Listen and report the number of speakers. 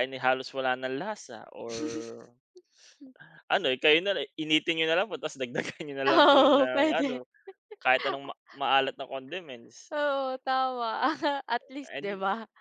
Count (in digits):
2